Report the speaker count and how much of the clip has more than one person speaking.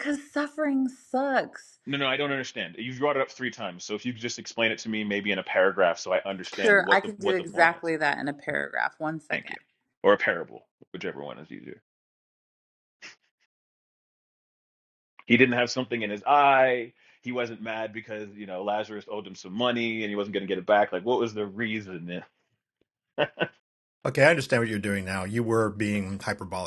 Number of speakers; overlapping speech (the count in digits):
3, about 6%